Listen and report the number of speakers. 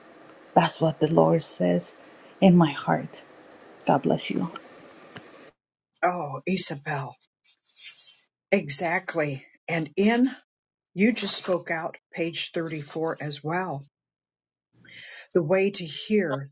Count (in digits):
2